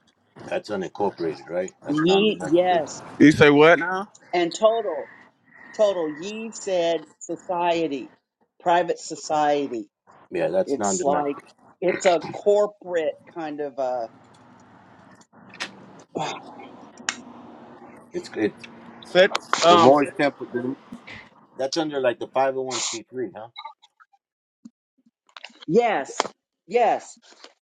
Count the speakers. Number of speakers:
3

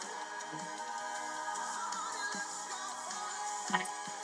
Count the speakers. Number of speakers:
0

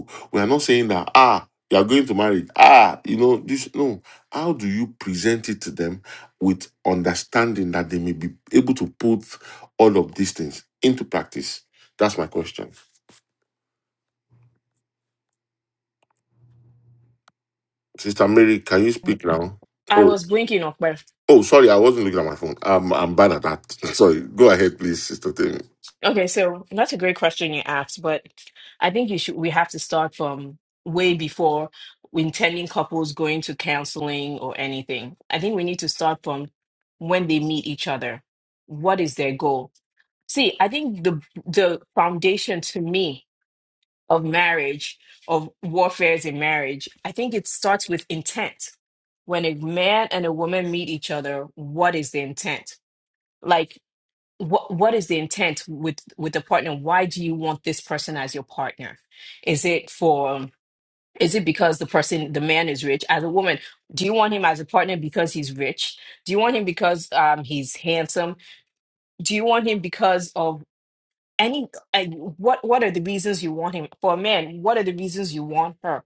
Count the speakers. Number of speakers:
2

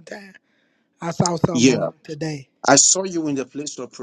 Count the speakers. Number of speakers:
2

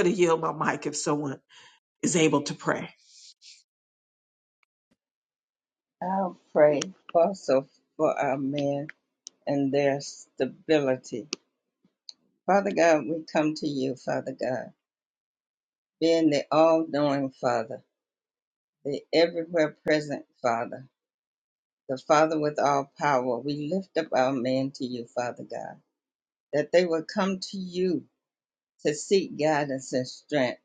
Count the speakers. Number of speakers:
2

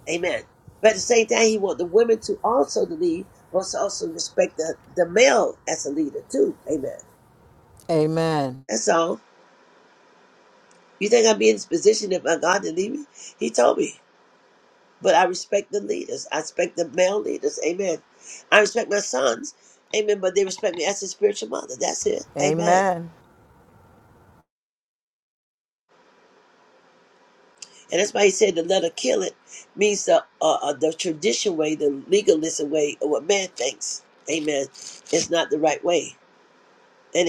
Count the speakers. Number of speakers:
2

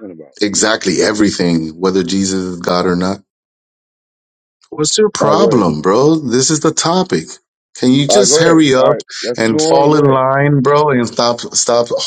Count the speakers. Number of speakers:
2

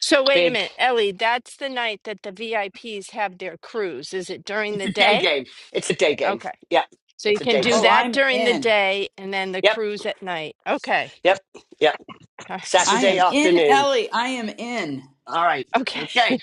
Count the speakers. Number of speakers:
3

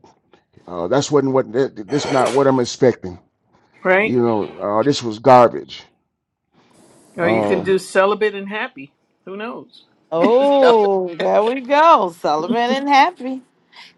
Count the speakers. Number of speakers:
3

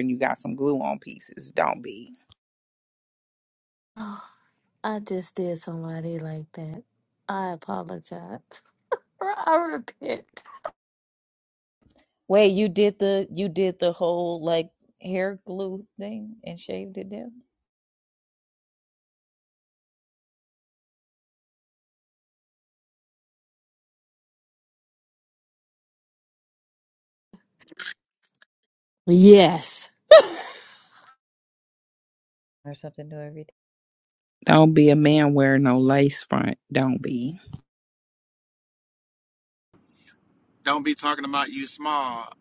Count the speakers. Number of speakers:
4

